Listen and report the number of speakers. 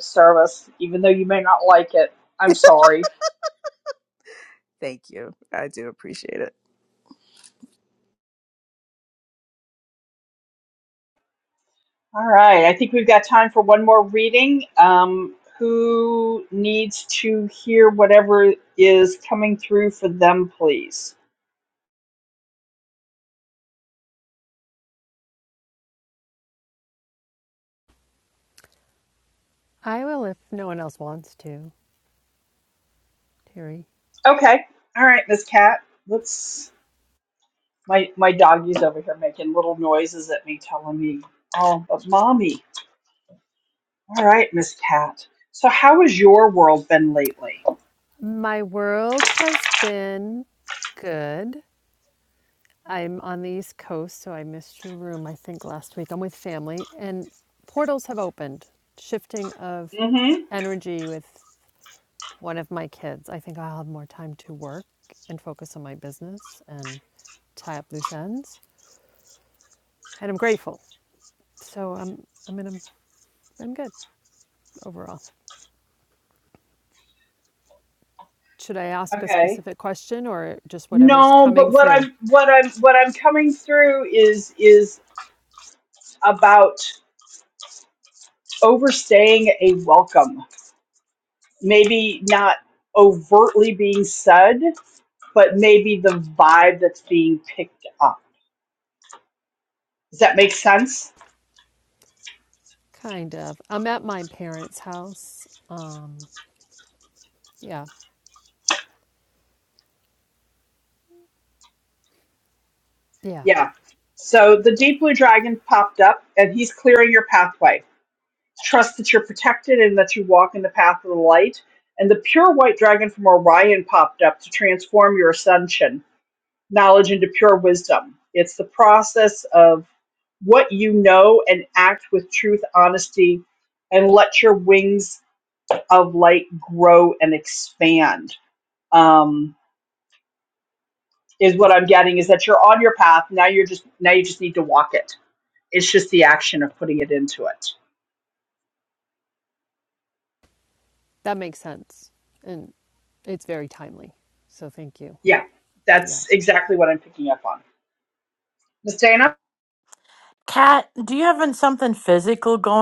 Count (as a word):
four